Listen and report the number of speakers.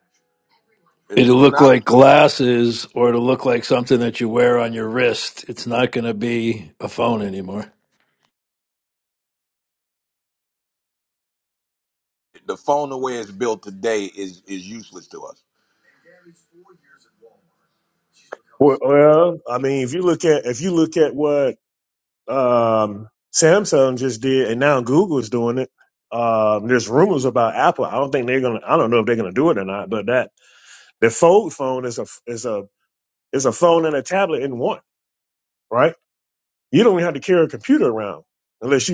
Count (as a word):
three